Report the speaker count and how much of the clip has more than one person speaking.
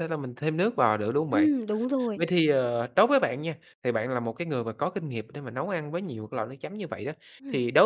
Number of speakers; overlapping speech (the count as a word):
two, about 3%